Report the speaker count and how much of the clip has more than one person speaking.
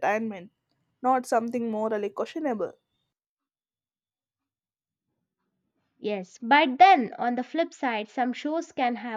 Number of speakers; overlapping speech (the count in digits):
2, no overlap